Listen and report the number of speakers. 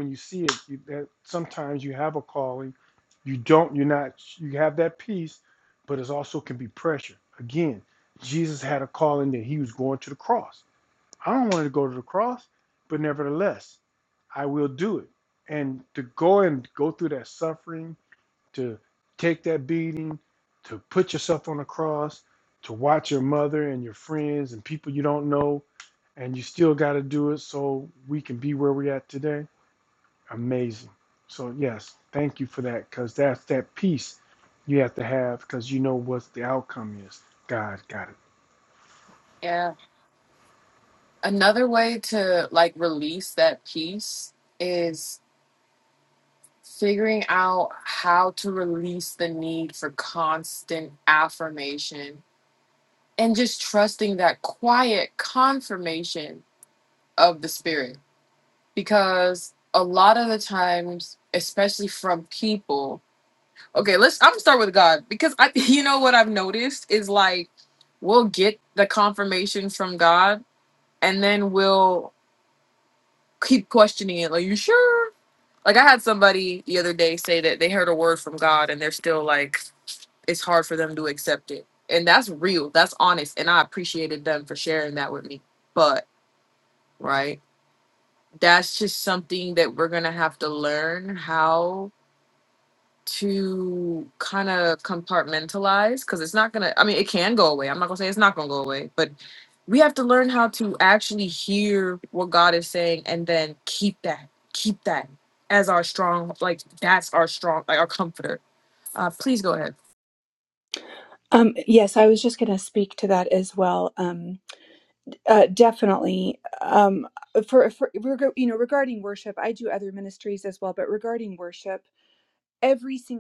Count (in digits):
3